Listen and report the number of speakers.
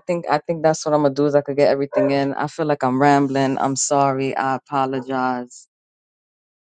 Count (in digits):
1